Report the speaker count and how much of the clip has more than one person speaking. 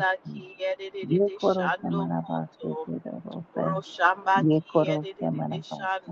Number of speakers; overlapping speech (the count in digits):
2, about 63%